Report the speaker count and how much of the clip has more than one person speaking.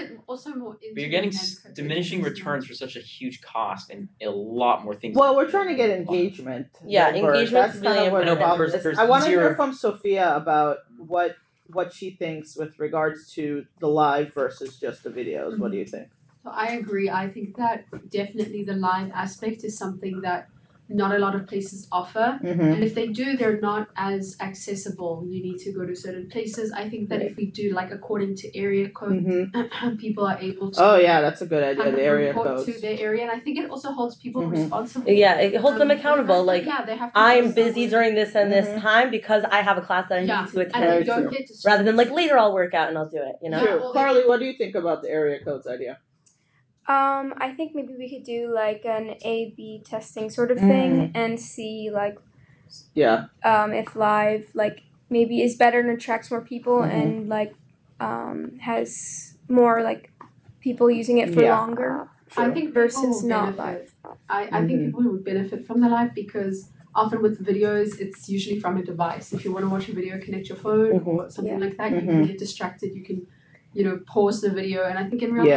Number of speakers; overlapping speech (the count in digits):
5, about 24%